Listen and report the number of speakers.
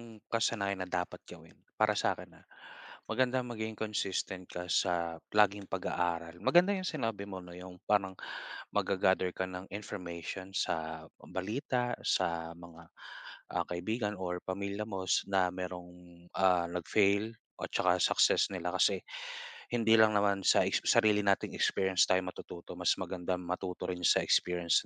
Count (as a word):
one